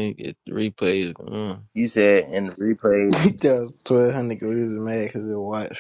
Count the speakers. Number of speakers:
3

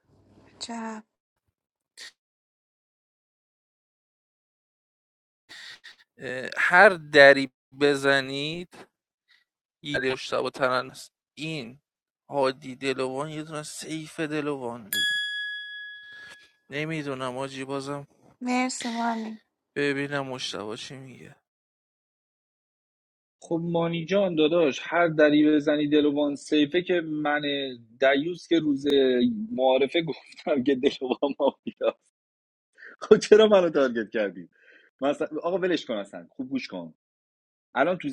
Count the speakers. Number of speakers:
3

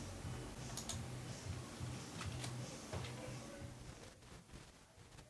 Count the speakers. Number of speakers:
0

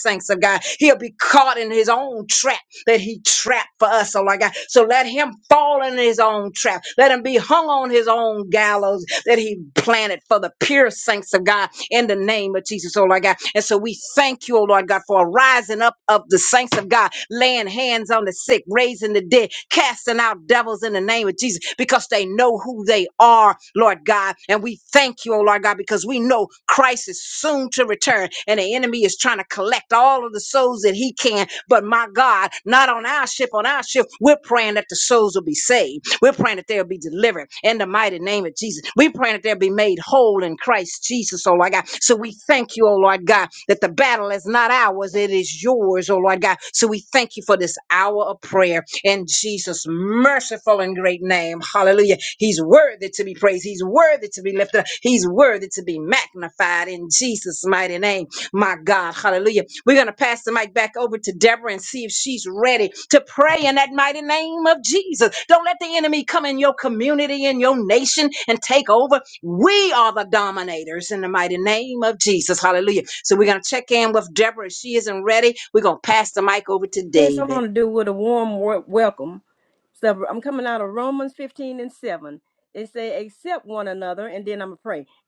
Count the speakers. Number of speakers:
2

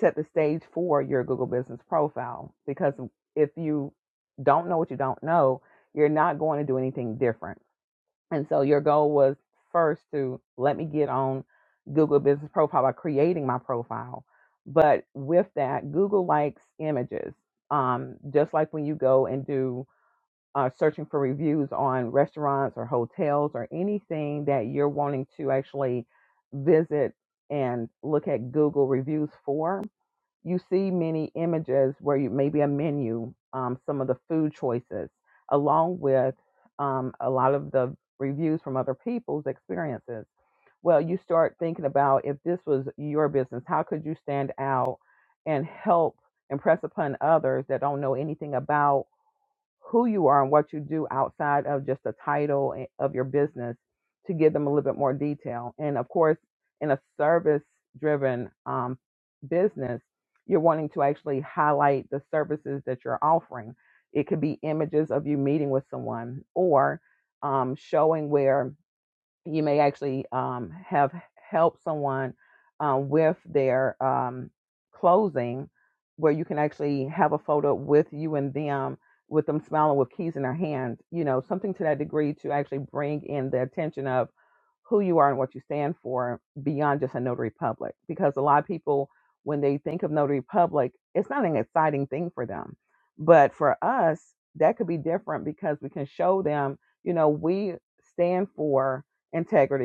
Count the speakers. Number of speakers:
1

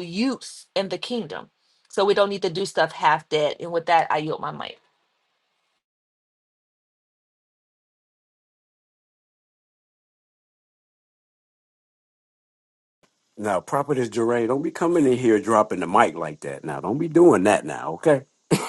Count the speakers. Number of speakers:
2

